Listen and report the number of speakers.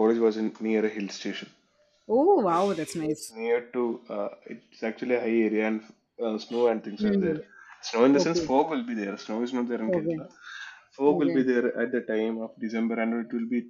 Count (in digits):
2